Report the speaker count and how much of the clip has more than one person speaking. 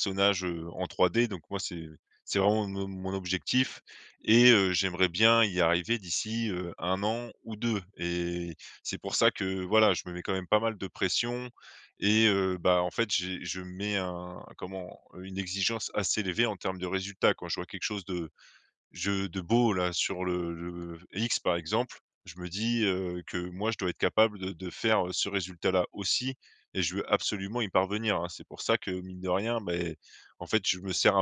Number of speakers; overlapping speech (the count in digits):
1, no overlap